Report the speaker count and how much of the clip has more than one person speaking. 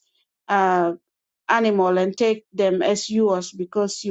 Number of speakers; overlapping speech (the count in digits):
1, no overlap